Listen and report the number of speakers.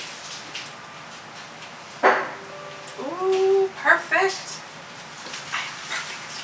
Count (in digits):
1